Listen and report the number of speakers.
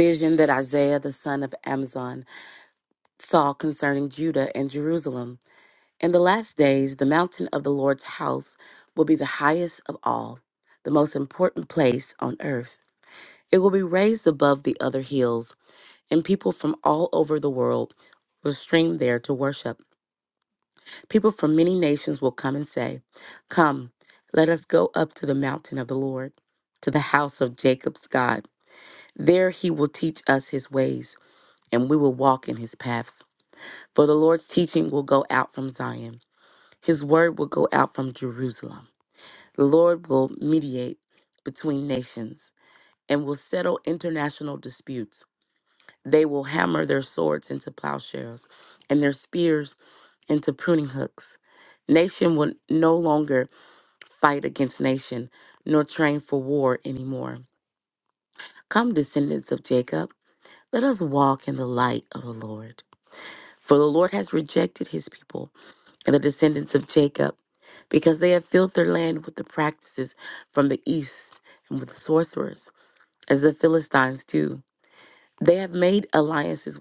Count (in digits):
1